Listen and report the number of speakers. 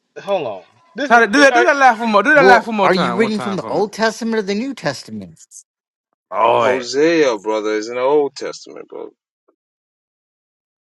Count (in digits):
4